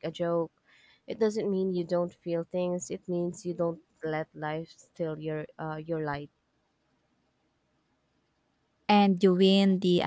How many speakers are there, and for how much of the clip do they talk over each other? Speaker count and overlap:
two, no overlap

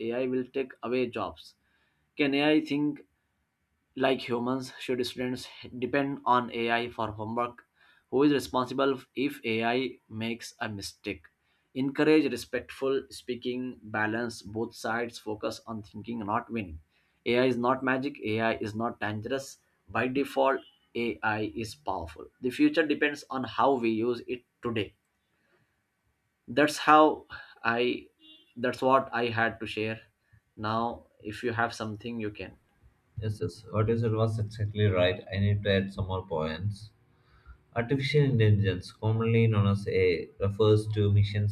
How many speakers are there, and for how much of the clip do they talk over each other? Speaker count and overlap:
two, no overlap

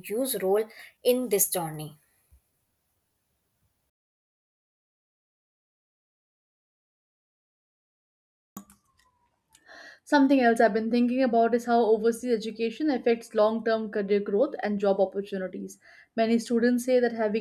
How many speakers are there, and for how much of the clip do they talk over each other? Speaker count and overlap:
two, no overlap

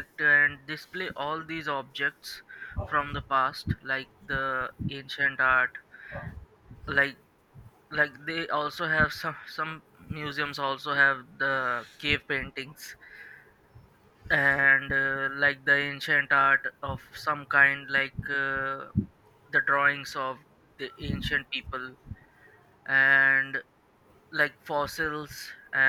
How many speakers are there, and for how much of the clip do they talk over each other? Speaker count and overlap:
one, no overlap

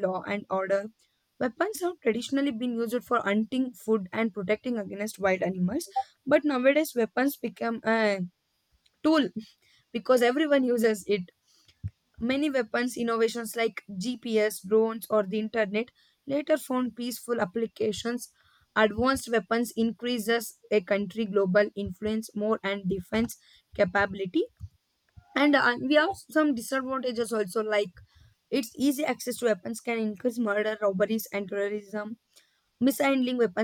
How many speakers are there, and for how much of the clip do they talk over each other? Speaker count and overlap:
one, no overlap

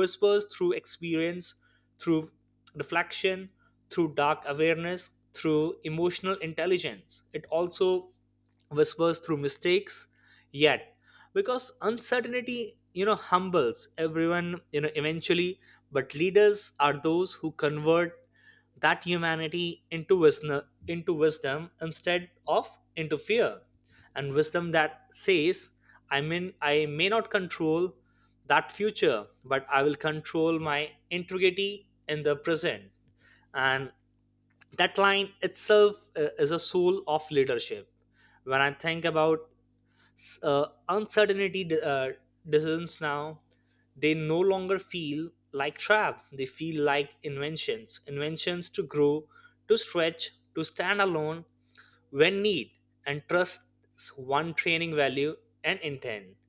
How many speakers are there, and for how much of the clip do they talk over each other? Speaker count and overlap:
one, no overlap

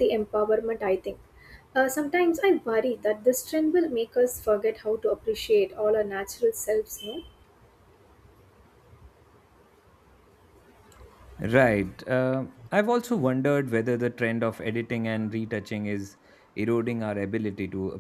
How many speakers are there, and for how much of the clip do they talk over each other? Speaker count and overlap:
two, no overlap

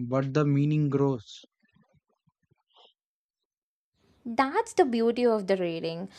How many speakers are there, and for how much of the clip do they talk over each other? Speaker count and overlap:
two, no overlap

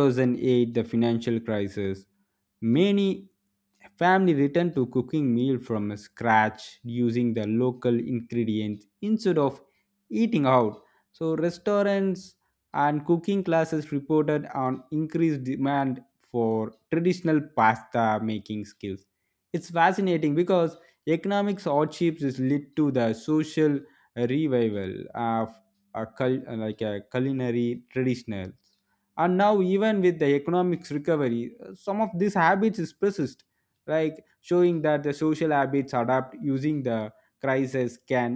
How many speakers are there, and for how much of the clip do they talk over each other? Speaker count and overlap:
one, no overlap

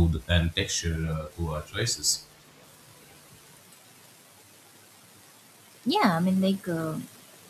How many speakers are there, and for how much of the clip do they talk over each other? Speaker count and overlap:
two, no overlap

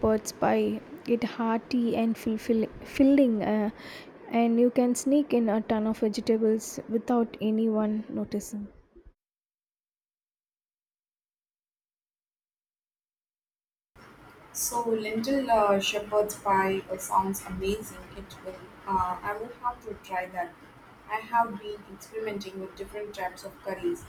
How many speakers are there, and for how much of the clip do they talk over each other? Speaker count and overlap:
two, no overlap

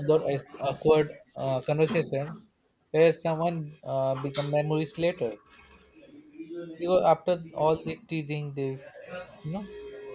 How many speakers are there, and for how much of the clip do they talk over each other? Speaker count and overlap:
one, no overlap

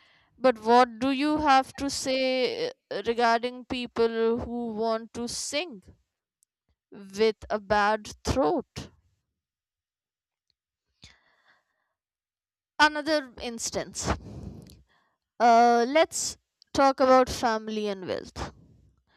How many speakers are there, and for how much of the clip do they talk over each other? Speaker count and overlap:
one, no overlap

